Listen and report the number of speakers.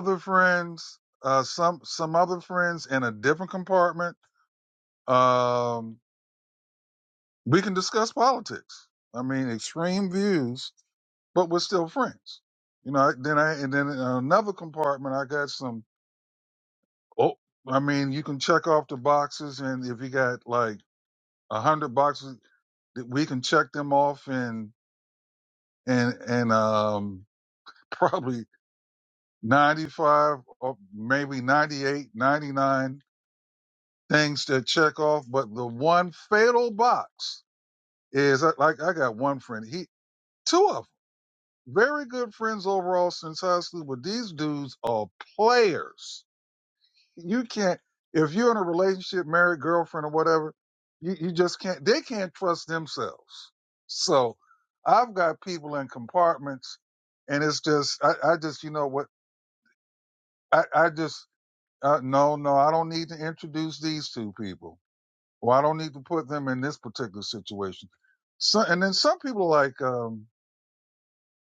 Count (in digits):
1